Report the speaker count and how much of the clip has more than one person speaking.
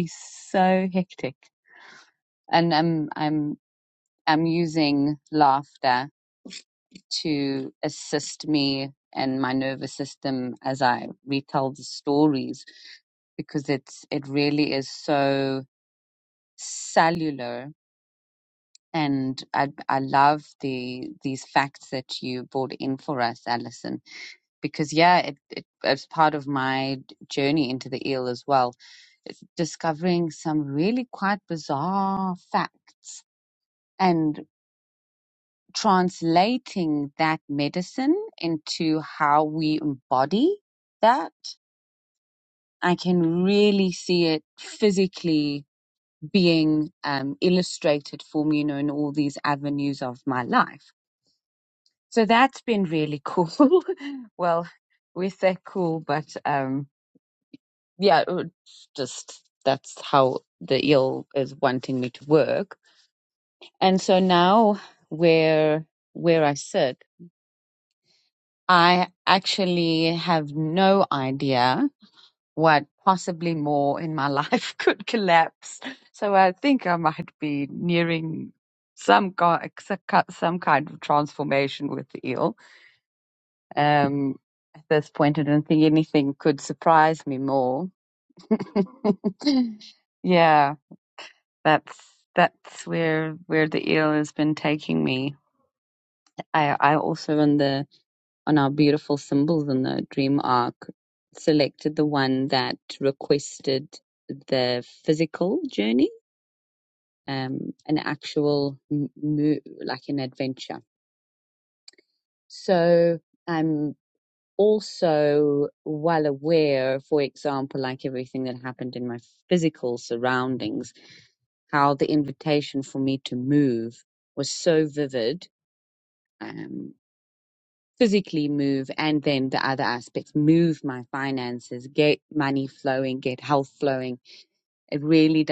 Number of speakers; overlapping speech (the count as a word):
one, no overlap